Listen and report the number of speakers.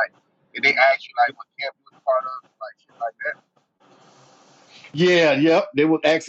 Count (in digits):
2